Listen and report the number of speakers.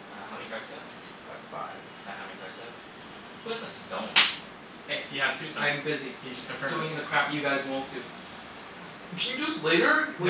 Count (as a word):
four